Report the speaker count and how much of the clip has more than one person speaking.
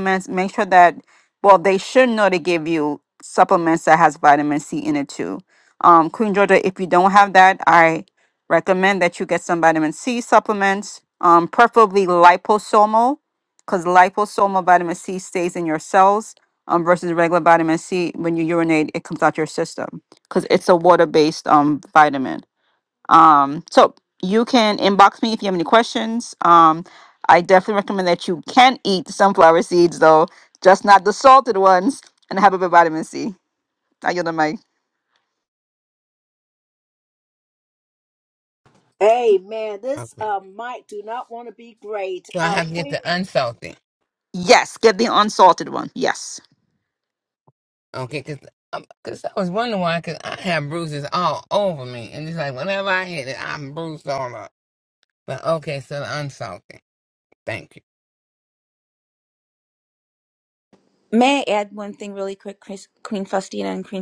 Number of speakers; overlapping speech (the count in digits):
4, about 2%